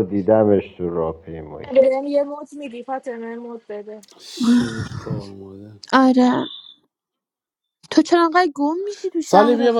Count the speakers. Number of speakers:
four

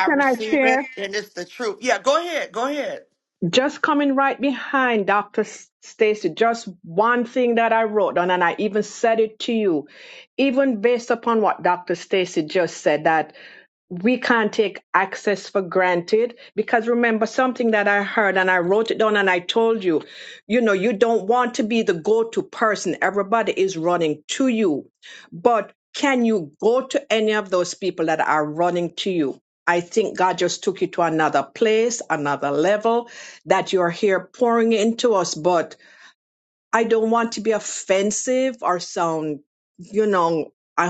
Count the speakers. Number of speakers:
two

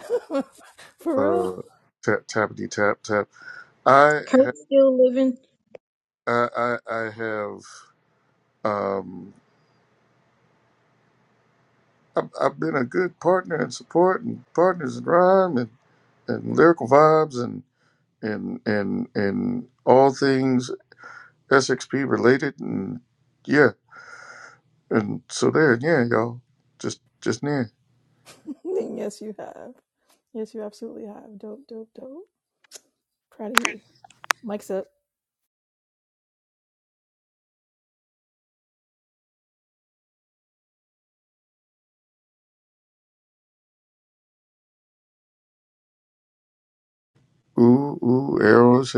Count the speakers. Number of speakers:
three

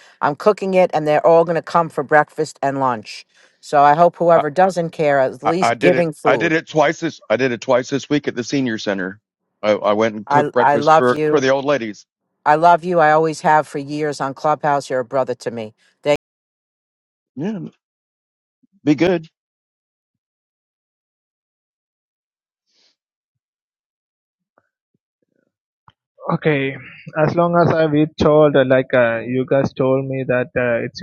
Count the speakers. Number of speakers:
three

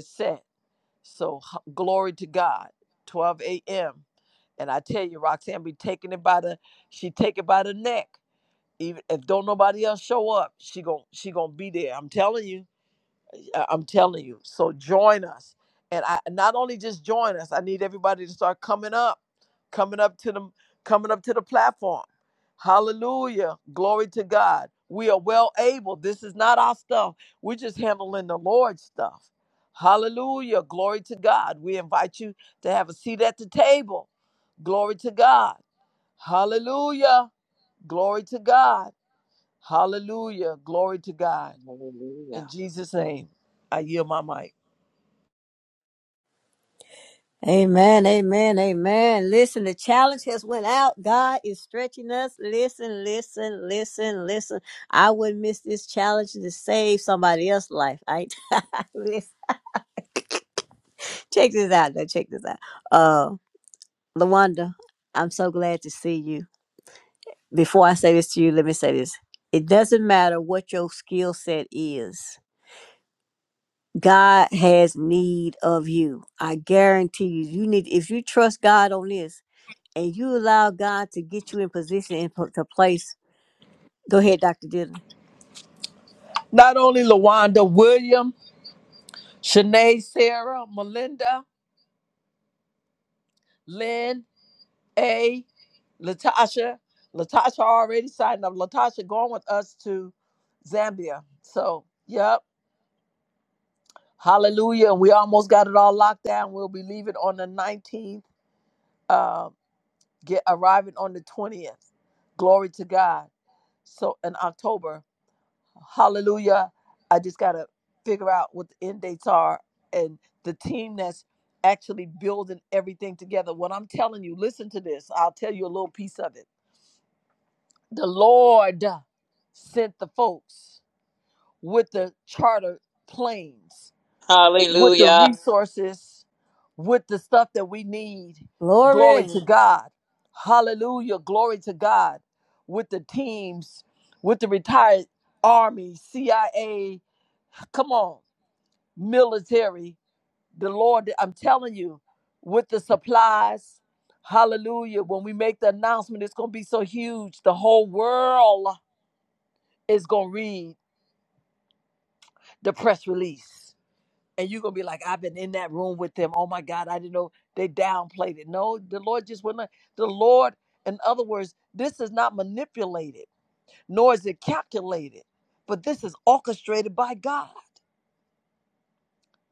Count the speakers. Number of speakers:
three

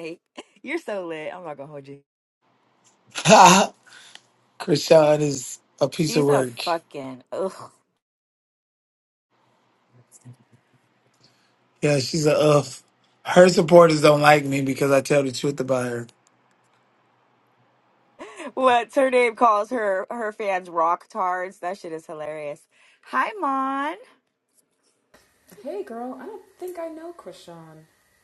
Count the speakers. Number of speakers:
three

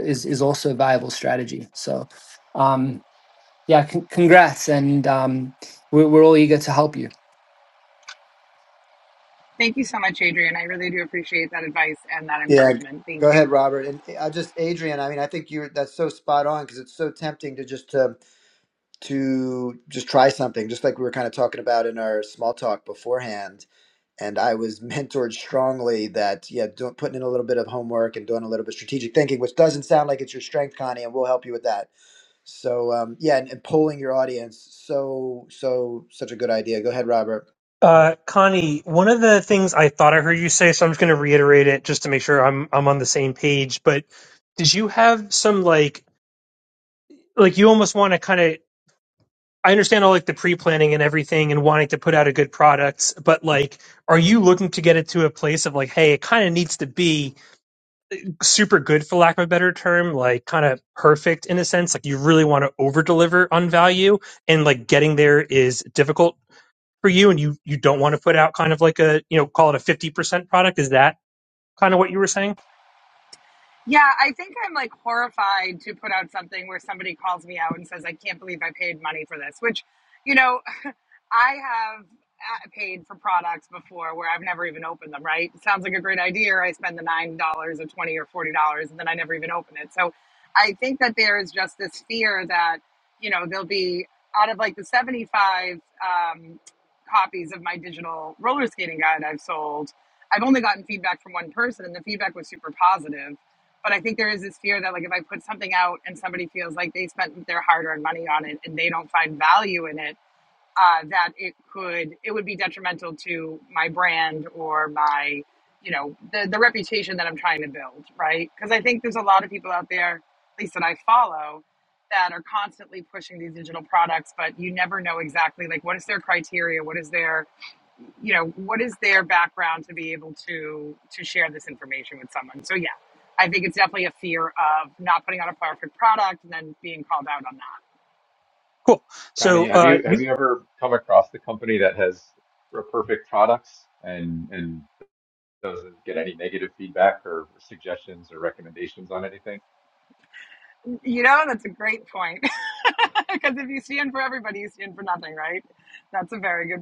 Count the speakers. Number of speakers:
five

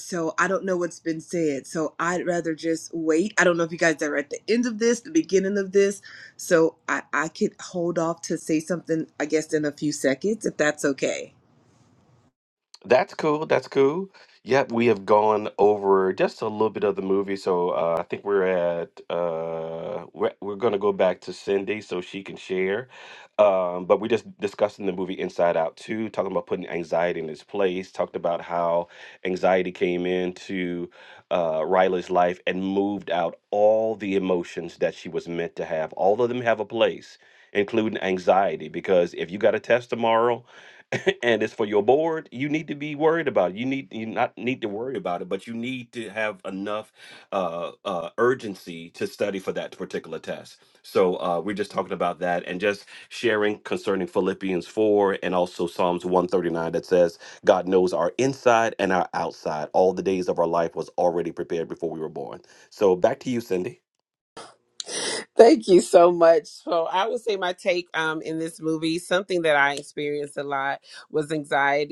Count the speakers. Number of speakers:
three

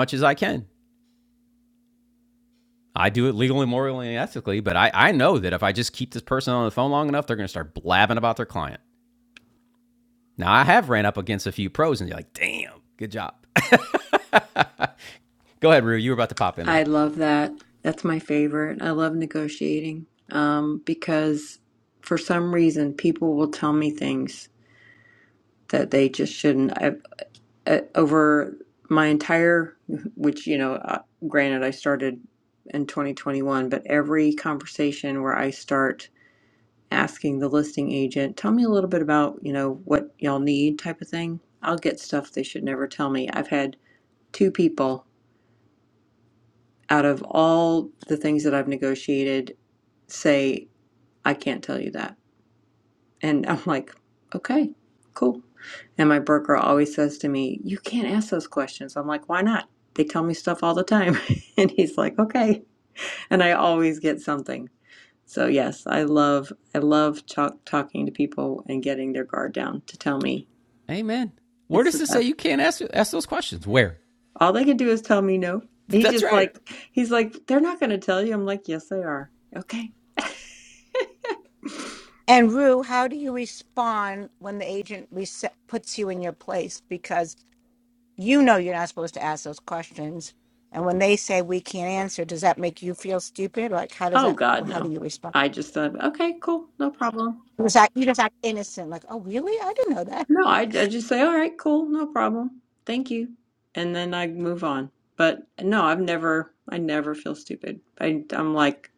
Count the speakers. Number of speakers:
three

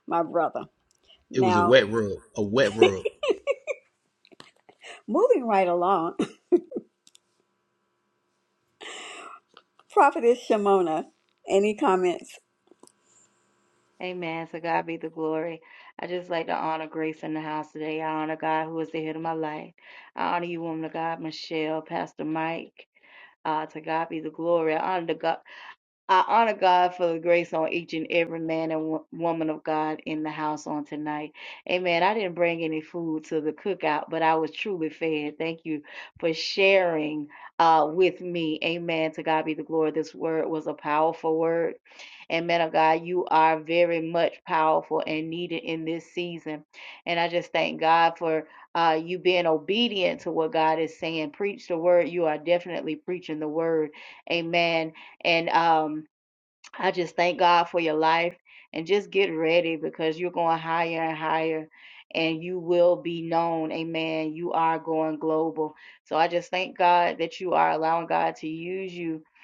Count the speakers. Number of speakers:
three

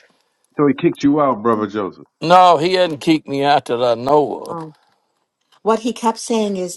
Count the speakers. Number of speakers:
three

